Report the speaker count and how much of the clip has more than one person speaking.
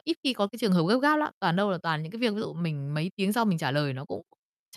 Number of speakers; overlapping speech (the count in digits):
1, no overlap